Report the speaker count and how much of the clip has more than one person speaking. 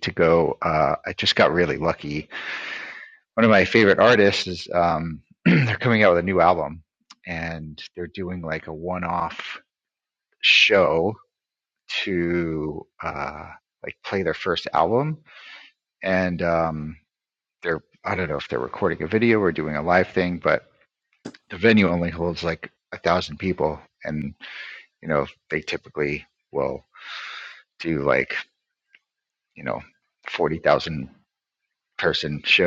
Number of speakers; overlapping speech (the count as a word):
one, no overlap